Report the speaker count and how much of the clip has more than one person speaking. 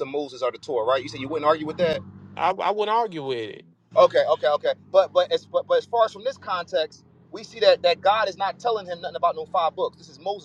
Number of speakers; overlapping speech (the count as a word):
two, no overlap